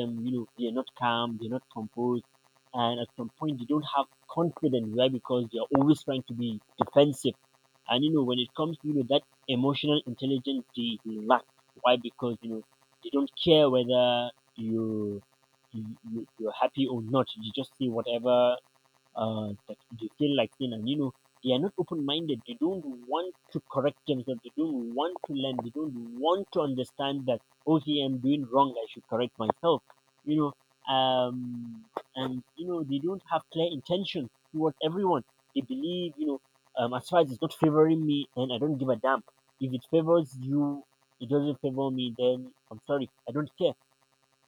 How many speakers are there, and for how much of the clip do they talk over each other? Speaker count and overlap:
one, no overlap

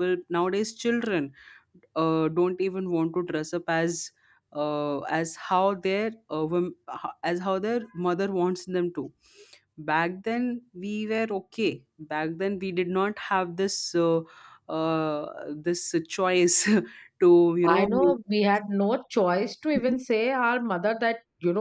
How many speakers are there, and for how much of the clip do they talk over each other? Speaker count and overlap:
two, about 2%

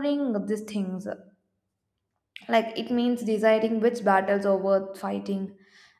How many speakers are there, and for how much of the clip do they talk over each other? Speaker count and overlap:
one, no overlap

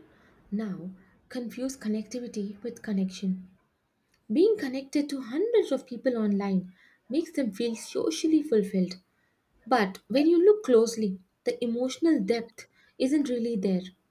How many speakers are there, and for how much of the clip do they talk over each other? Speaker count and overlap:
one, no overlap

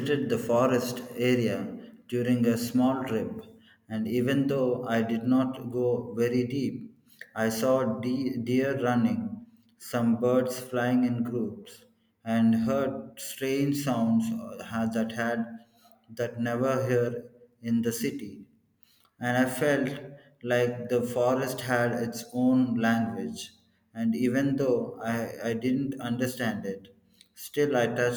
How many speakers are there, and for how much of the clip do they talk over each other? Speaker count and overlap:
one, no overlap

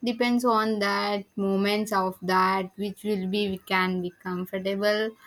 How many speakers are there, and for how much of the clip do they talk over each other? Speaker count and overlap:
one, no overlap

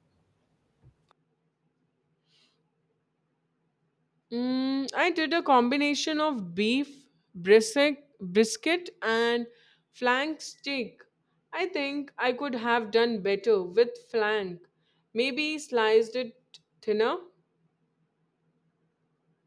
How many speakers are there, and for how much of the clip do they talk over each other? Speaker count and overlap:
one, no overlap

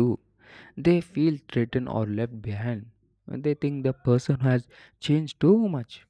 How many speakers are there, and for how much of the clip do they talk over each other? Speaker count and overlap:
one, no overlap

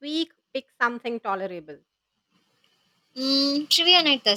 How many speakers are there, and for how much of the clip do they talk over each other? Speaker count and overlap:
two, no overlap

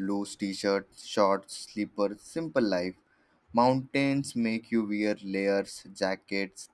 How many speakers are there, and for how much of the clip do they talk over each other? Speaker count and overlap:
one, no overlap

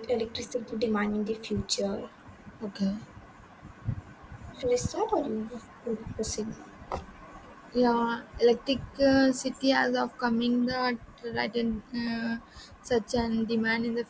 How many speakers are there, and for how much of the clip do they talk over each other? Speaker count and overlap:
two, no overlap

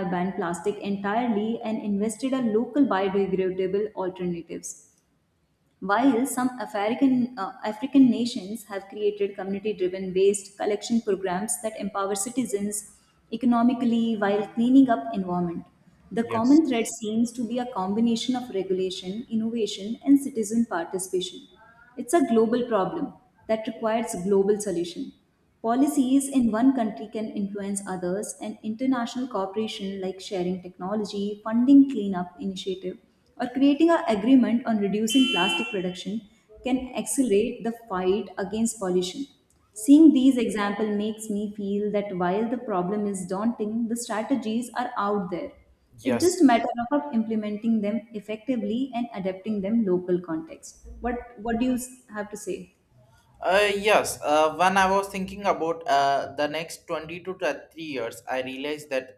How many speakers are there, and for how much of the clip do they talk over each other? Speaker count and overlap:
two, about 1%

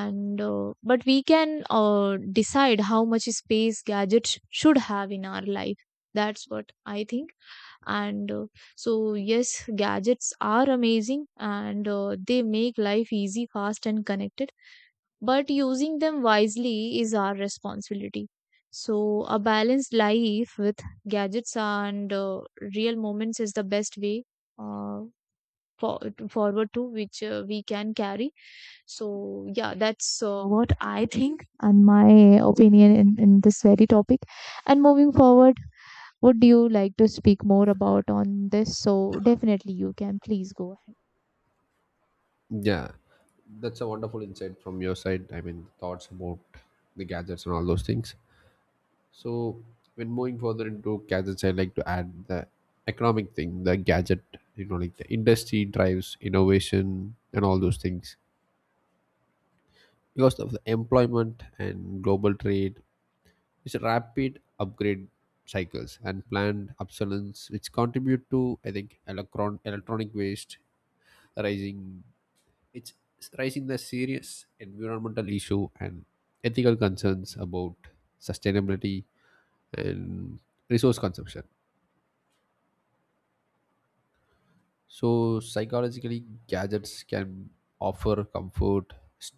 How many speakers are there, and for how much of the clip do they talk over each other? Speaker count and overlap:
two, no overlap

